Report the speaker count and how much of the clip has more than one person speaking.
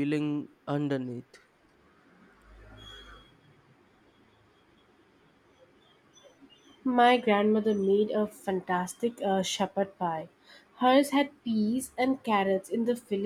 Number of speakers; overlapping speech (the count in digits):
2, no overlap